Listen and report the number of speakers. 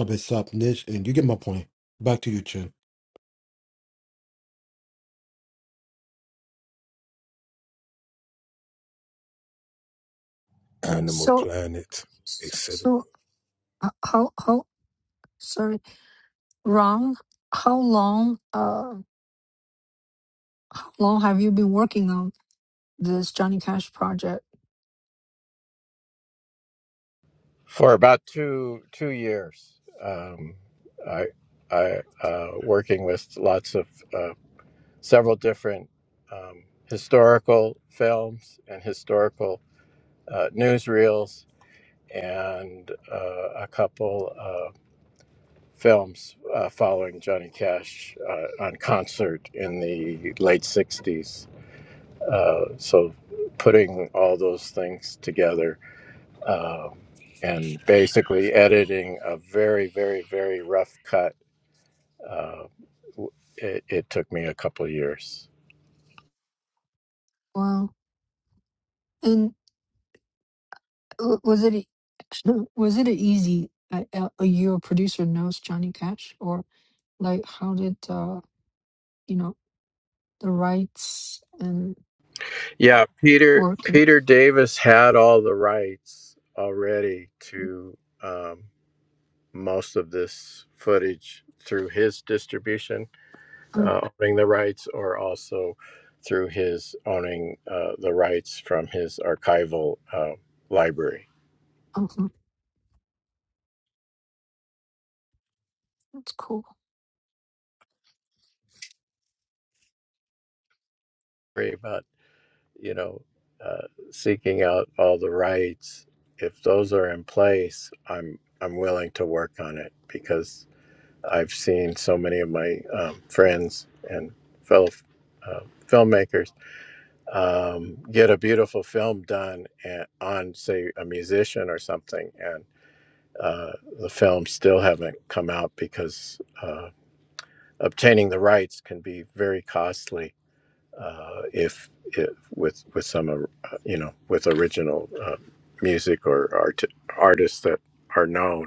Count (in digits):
4